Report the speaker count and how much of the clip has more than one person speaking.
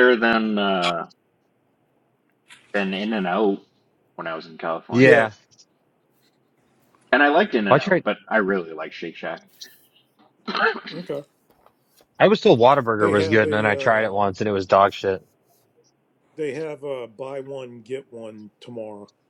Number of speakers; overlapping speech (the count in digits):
3, about 9%